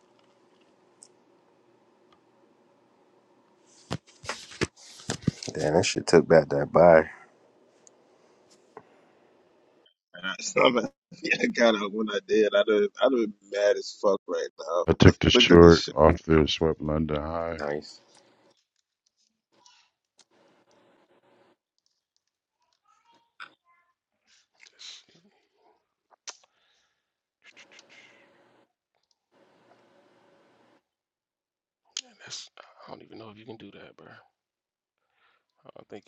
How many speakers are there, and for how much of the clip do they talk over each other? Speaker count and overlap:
four, about 3%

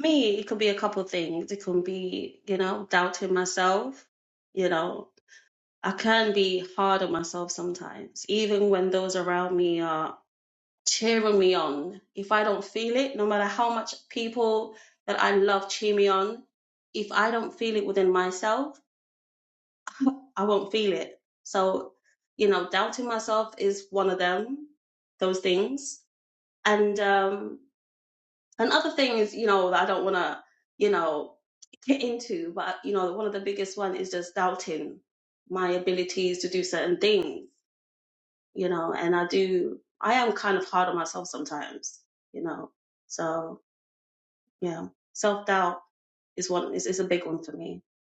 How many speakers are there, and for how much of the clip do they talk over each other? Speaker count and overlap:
one, no overlap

